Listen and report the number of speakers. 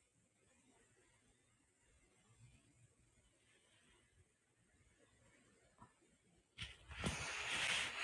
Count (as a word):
zero